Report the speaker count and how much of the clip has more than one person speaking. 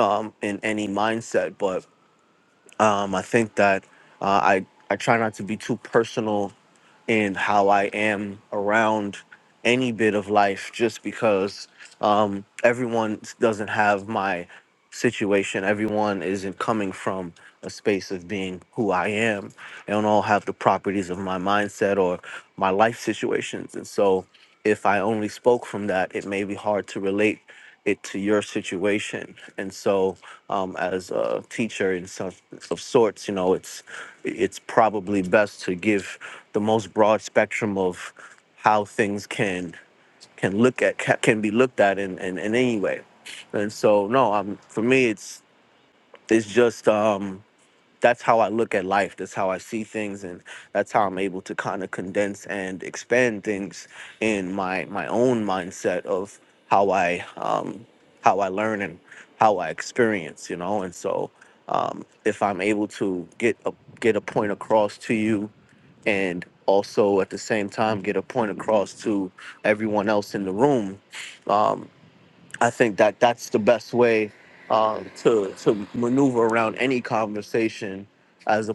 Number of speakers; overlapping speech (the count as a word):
one, no overlap